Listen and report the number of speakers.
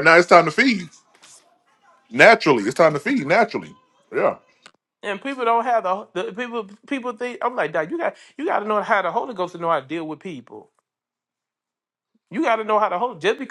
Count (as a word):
two